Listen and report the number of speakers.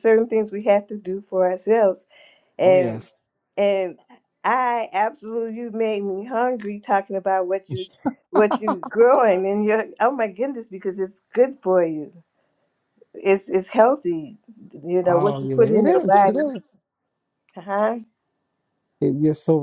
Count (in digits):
2